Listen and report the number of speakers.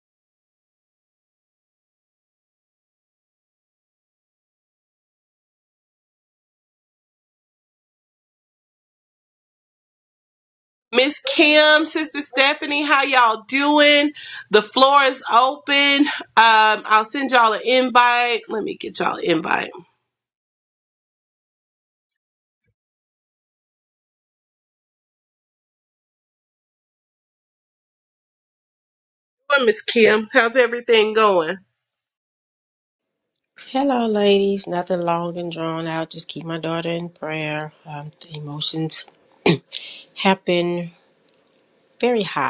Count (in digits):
2